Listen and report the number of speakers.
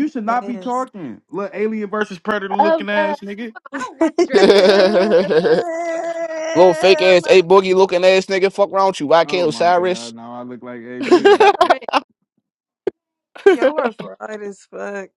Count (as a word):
four